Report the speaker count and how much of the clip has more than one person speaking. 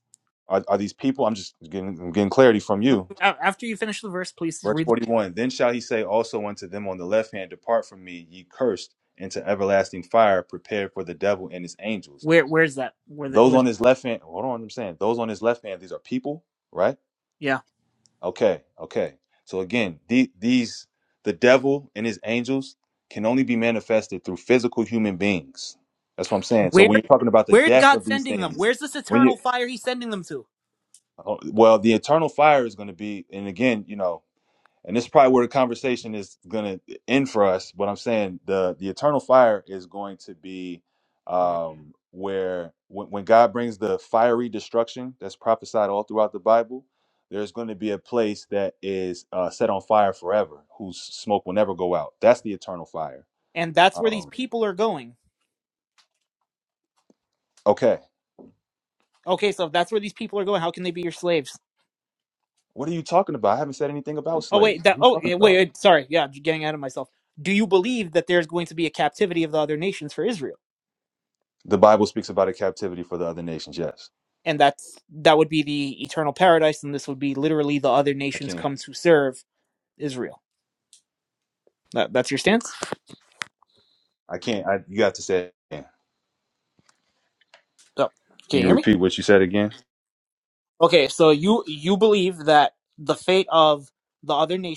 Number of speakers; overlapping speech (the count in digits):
2, about 5%